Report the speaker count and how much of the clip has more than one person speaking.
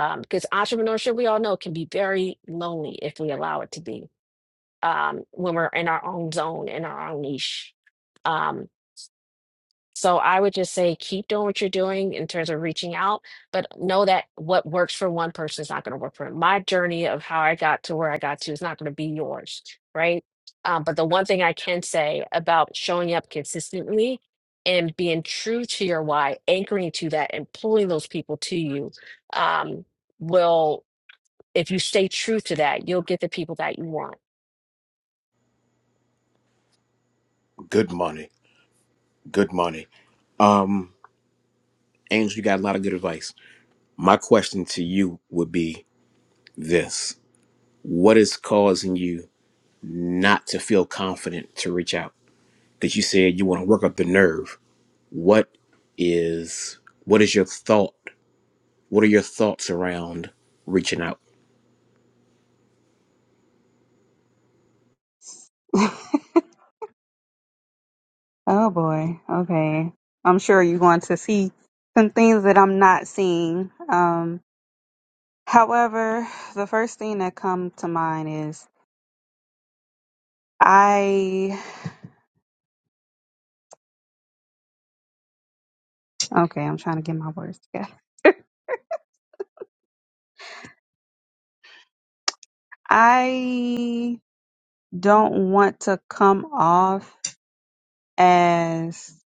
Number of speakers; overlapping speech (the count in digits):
3, no overlap